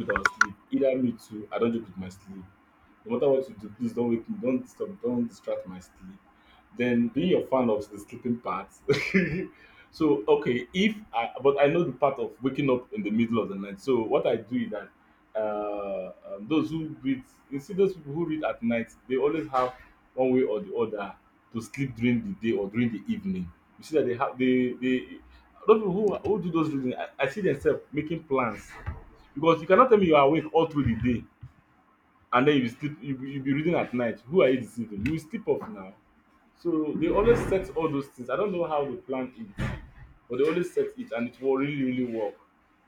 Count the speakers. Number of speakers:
one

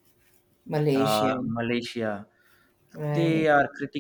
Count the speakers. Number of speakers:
two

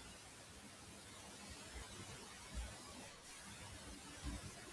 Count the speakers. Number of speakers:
zero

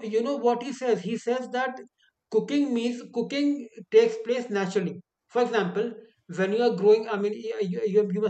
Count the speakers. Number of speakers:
one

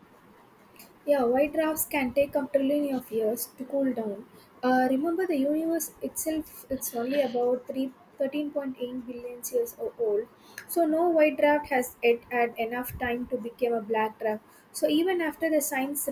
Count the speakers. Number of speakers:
one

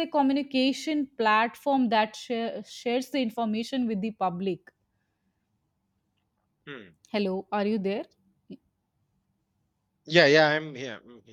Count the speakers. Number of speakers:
two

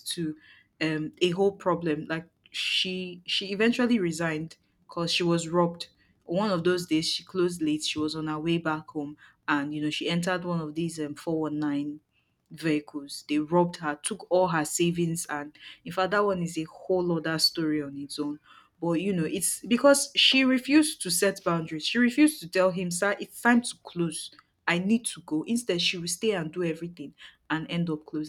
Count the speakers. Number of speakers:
one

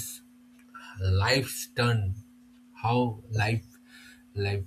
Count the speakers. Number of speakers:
one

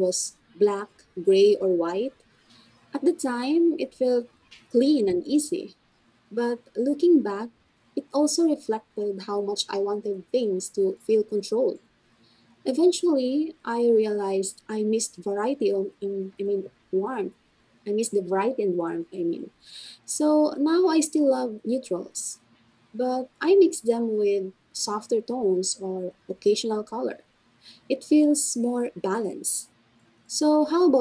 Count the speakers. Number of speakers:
one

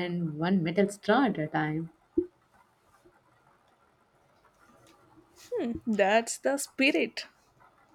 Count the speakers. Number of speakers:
two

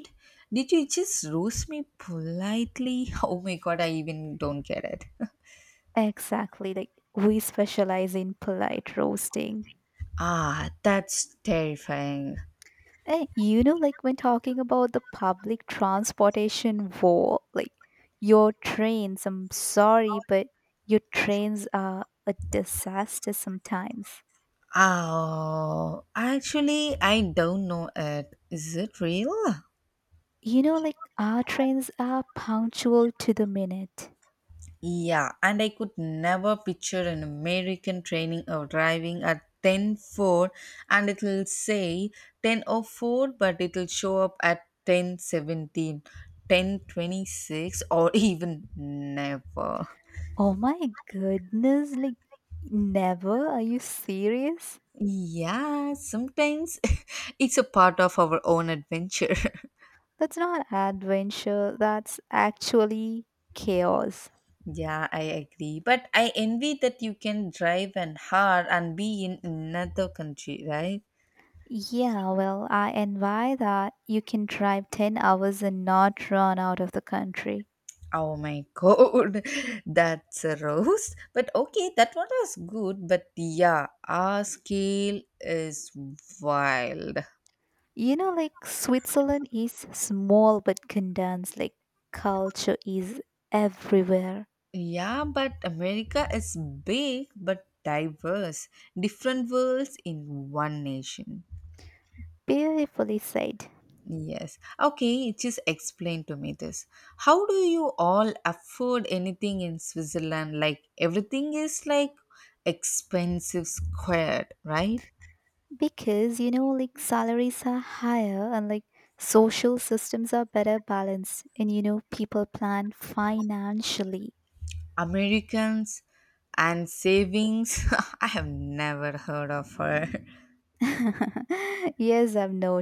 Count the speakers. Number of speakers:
two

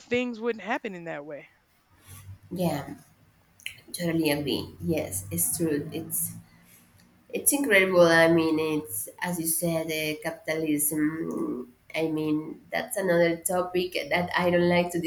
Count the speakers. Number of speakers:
two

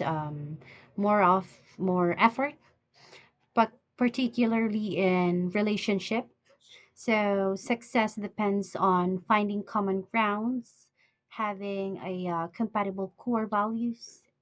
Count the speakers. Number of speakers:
one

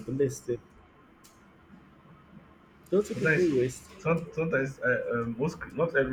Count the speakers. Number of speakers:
two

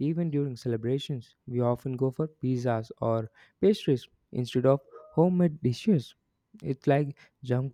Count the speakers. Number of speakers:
one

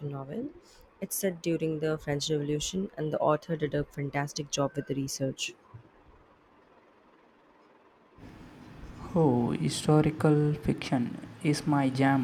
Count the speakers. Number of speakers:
two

